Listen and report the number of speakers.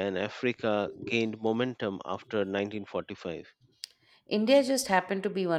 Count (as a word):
two